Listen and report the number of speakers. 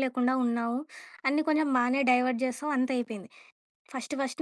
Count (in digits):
1